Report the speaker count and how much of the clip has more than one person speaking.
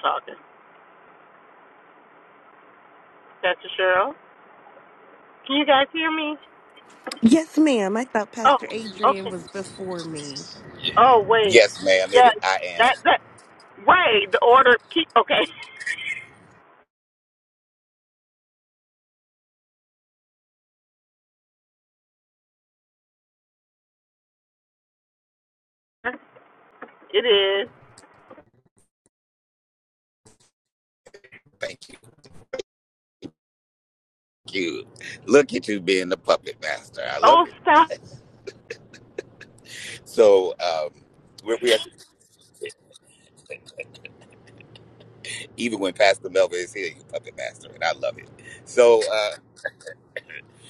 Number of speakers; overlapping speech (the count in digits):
3, about 2%